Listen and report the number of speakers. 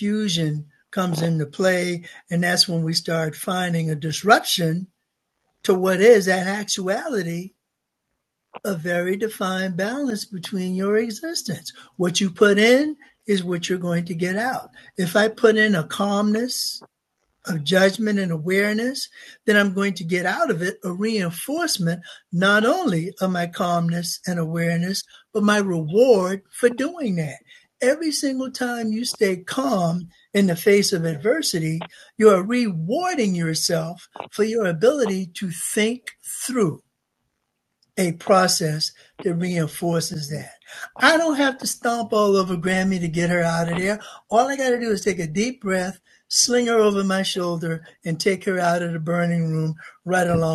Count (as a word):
one